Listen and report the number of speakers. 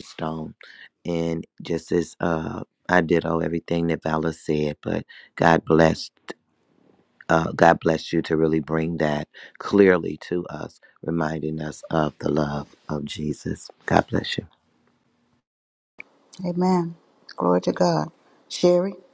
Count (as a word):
two